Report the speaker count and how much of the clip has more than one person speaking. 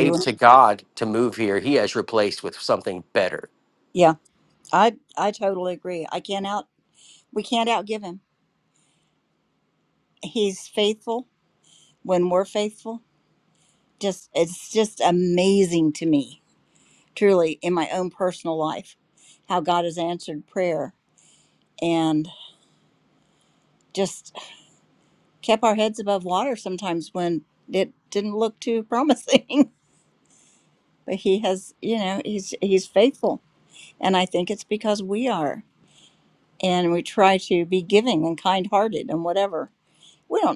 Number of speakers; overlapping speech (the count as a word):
two, about 1%